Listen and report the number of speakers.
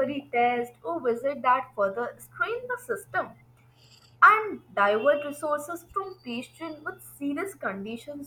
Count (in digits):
1